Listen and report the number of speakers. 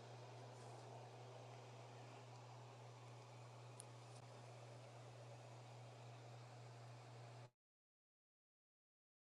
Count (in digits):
0